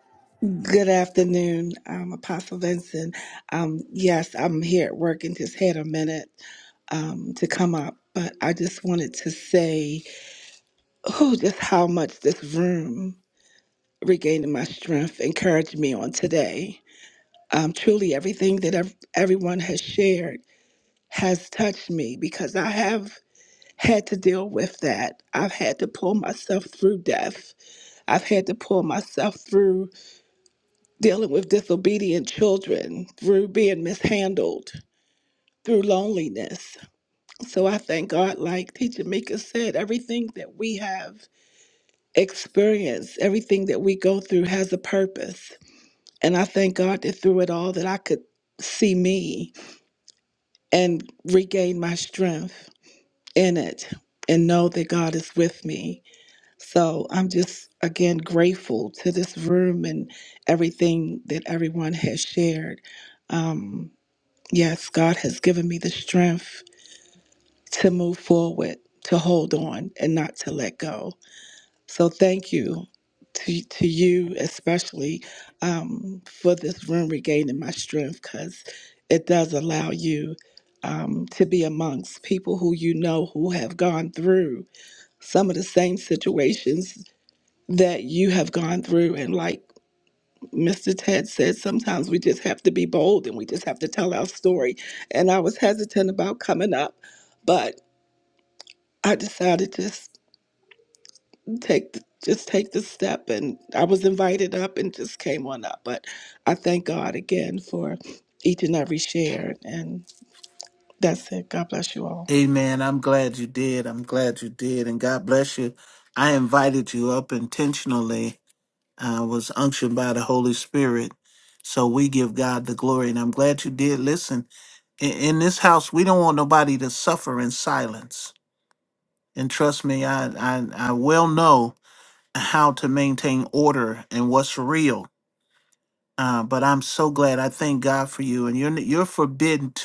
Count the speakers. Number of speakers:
2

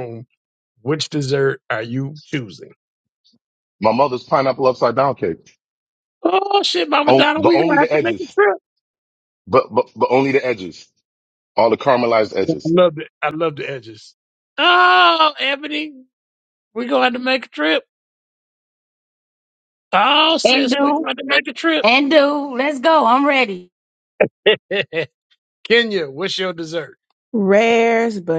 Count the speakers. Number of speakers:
4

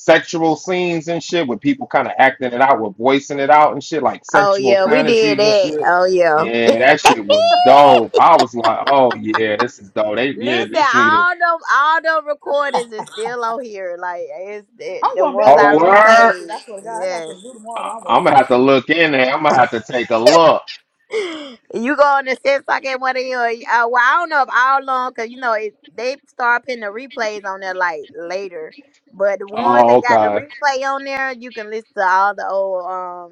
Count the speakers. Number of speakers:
3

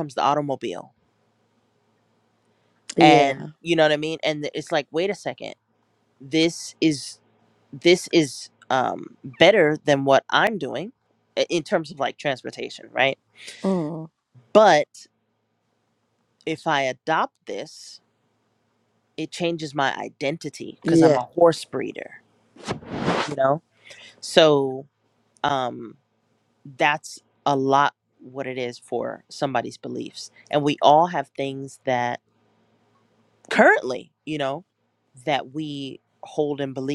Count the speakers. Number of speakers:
2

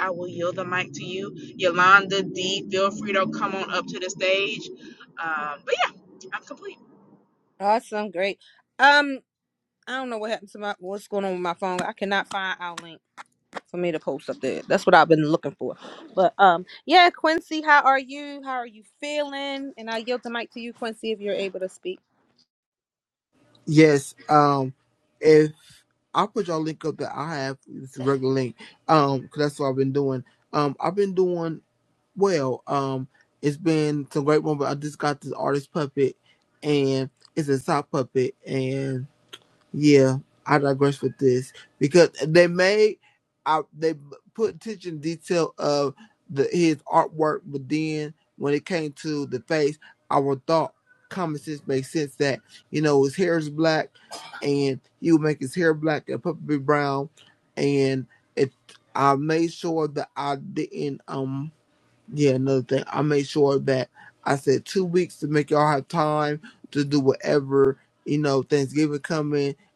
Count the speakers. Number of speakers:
3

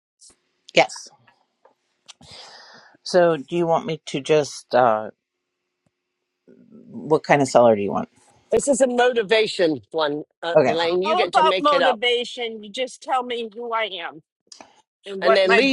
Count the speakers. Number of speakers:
3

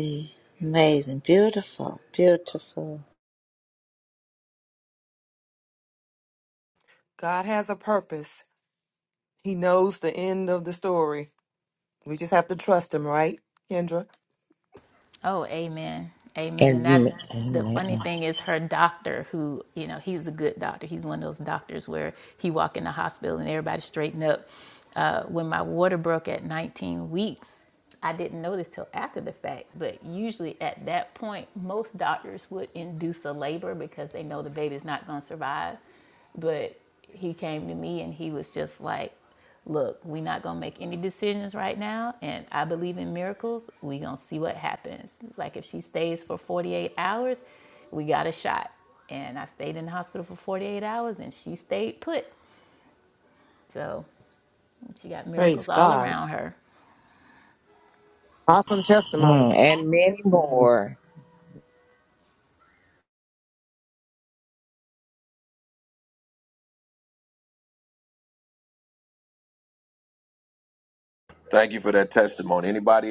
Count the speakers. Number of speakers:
5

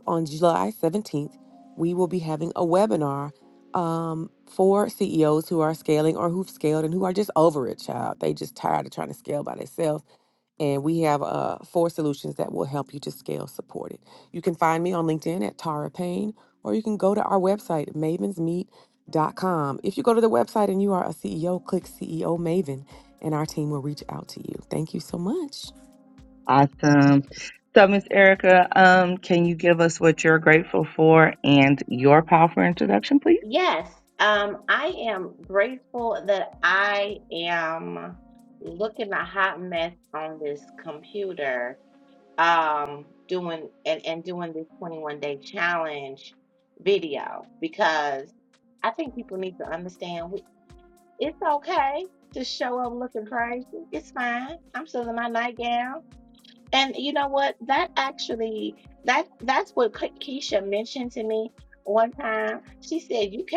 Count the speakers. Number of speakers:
3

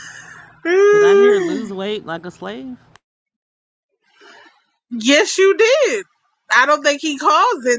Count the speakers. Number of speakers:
2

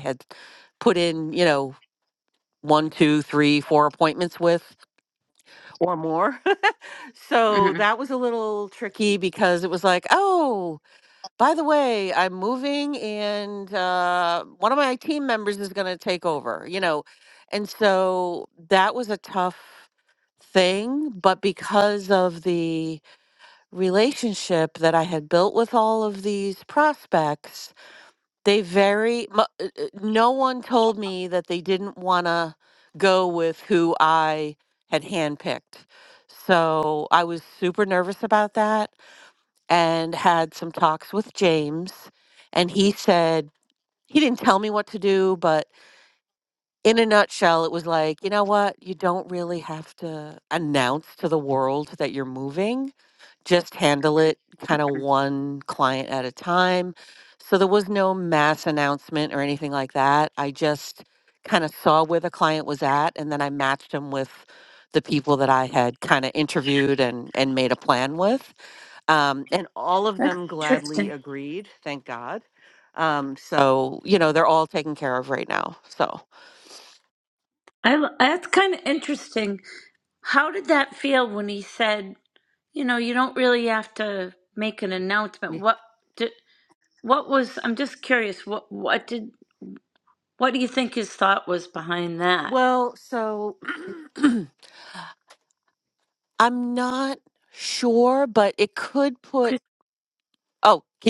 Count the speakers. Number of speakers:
2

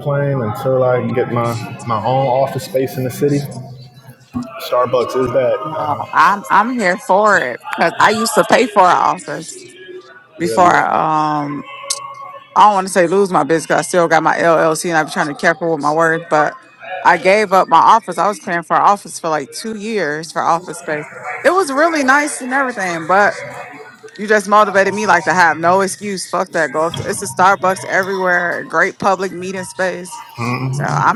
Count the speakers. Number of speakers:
2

